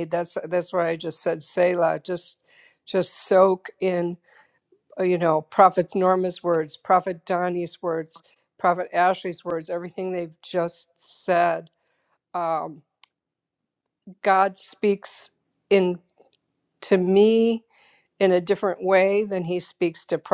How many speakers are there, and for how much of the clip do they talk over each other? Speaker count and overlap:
1, no overlap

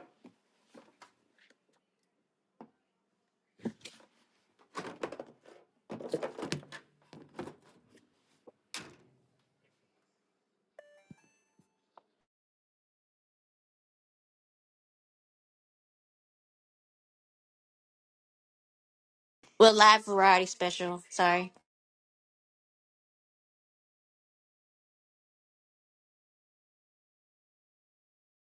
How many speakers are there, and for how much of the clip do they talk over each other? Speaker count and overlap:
1, no overlap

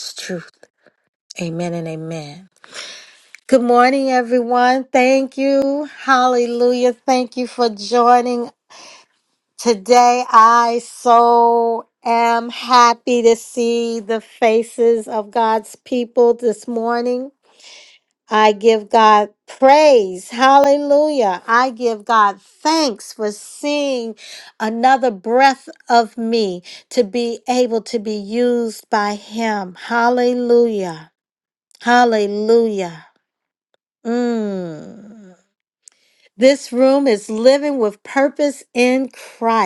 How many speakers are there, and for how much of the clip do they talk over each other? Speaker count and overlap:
1, no overlap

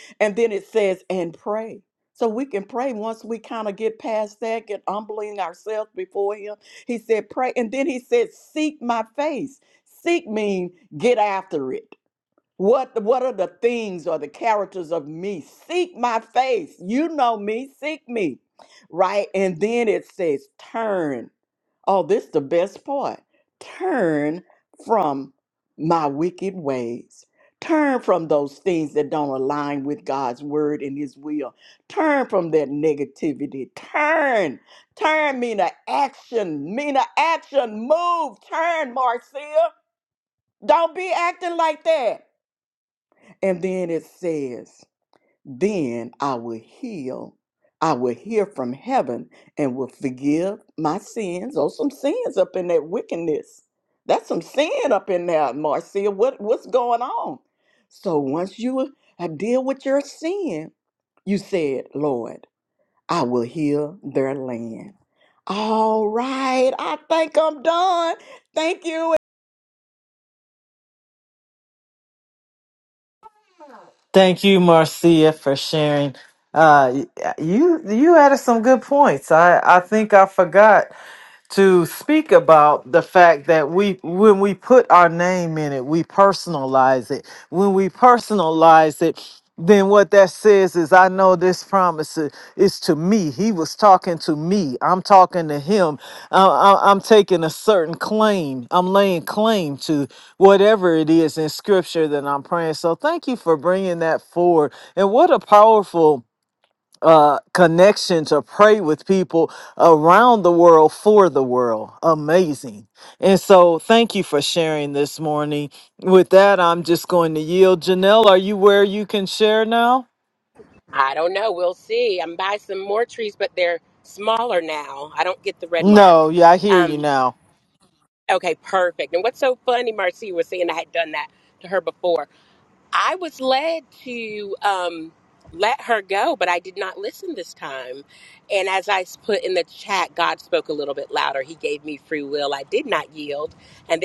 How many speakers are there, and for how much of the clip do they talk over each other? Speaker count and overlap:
3, under 1%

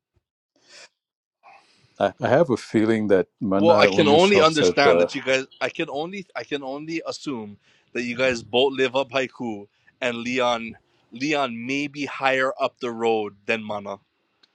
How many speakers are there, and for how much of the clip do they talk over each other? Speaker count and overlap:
2, about 11%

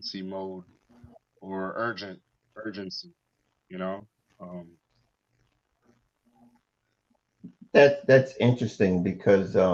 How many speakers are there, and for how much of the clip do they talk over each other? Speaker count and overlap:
2, no overlap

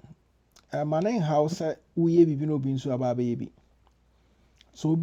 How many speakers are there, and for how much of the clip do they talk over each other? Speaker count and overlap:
1, no overlap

